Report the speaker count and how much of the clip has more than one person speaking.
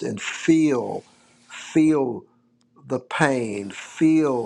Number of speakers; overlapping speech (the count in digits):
1, no overlap